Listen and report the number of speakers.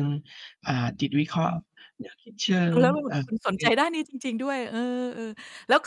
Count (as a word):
two